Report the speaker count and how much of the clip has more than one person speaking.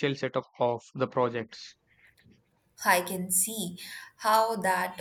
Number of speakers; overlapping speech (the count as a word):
two, no overlap